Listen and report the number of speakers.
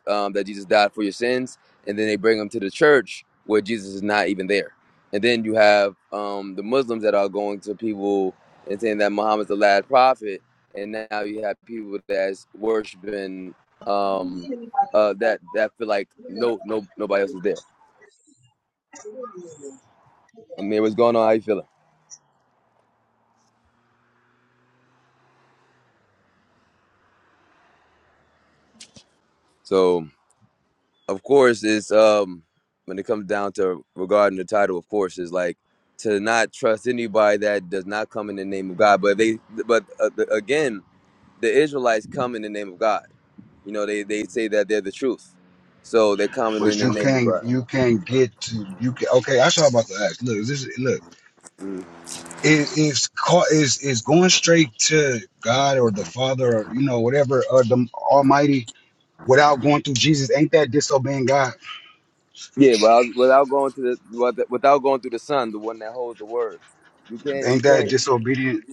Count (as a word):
three